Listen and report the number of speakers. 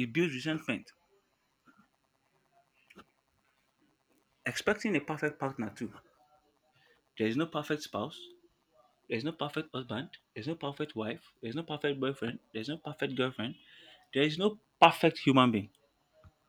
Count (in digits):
1